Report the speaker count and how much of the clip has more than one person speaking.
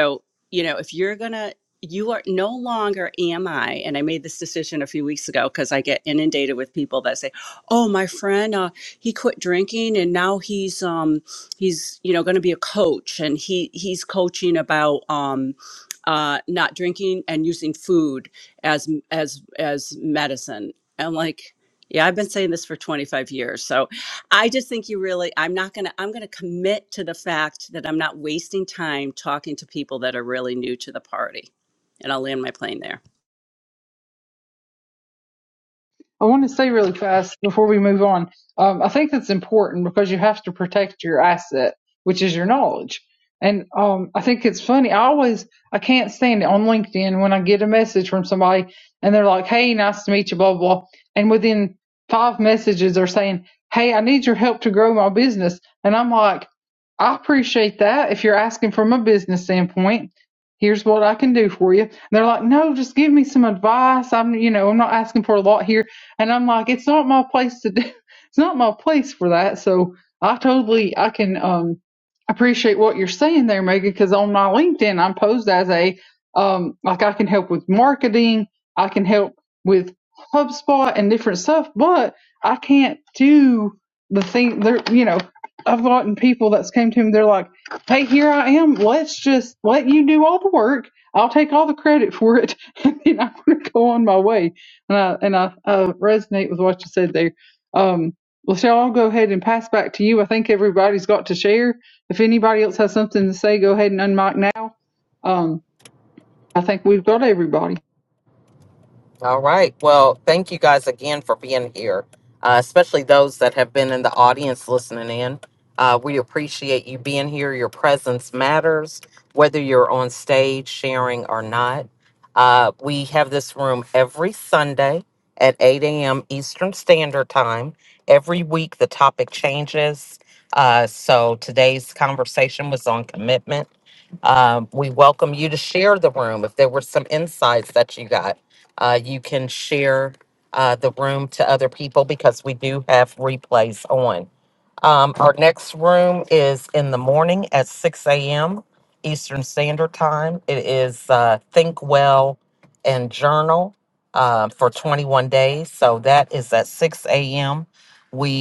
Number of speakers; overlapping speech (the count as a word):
three, no overlap